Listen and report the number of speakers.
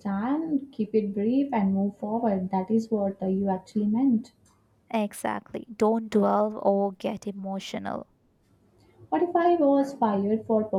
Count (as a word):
two